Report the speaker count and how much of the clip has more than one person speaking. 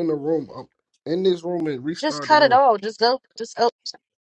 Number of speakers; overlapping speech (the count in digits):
2, about 13%